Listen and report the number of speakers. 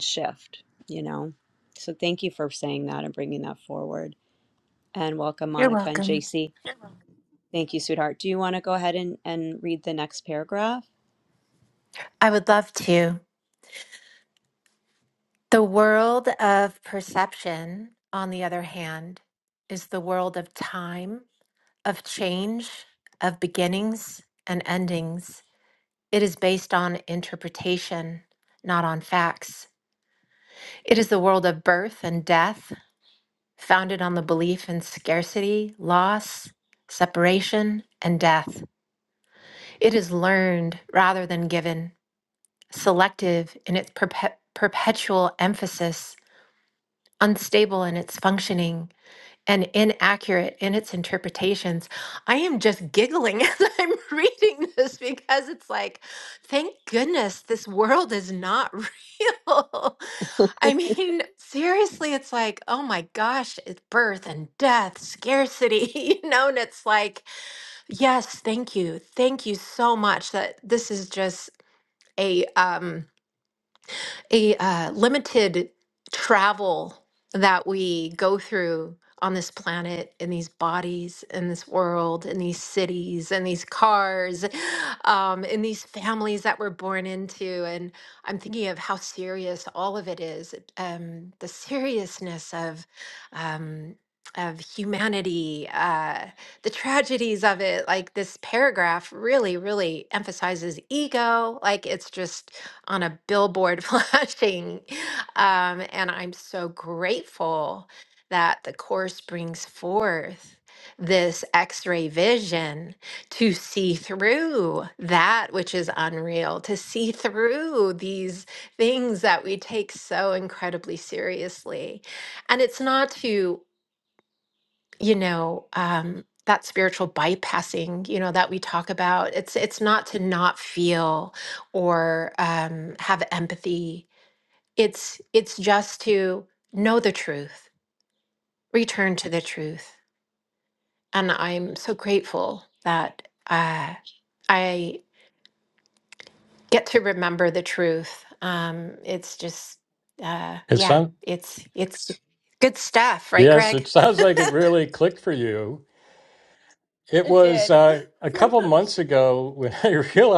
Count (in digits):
3